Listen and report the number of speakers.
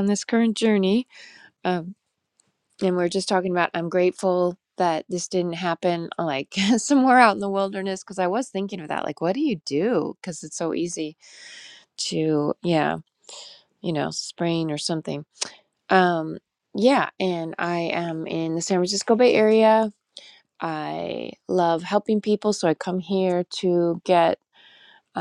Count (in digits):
1